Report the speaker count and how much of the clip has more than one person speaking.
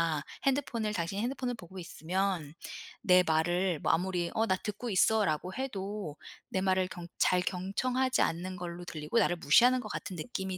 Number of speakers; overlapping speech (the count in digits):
1, no overlap